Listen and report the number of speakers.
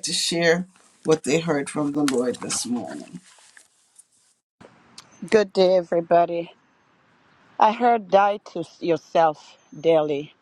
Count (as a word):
two